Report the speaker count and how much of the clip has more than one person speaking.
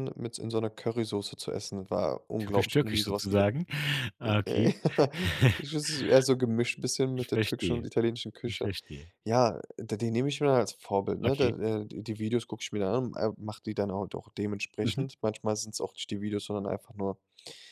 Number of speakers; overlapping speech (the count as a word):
two, about 16%